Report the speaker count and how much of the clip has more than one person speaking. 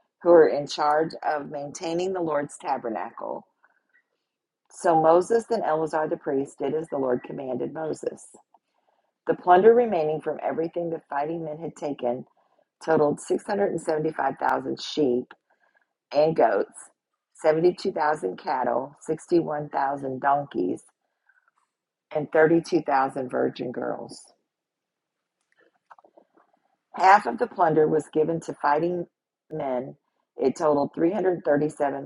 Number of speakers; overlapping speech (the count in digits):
1, no overlap